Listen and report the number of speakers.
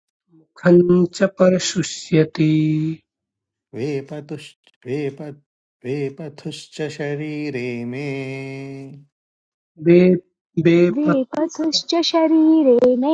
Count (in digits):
3